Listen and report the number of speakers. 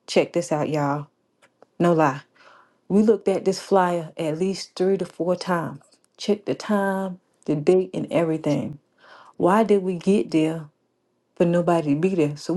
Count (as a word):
one